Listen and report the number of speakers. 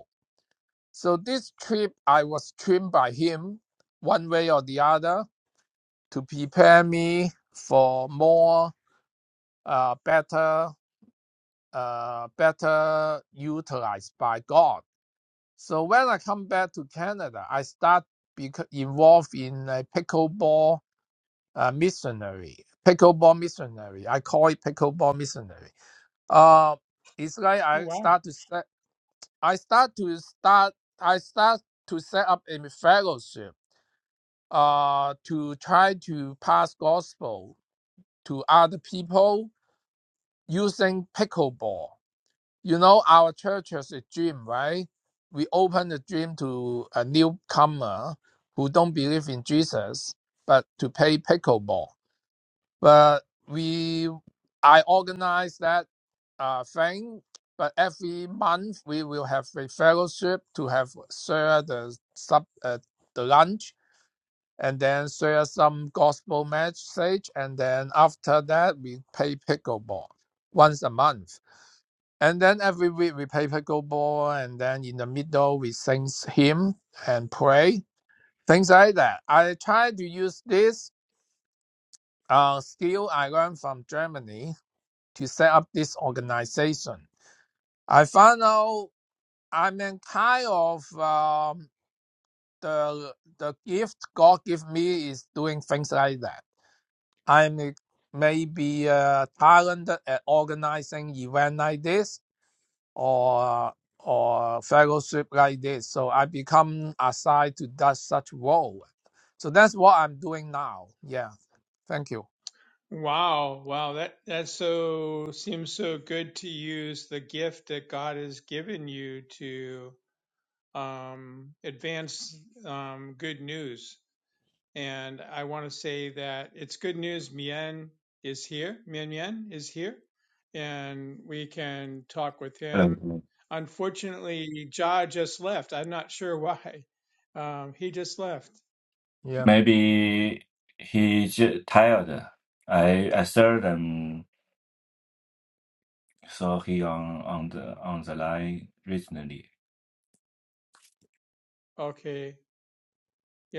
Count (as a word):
three